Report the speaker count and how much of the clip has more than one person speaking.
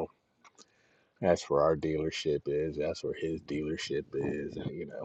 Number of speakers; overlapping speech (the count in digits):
1, no overlap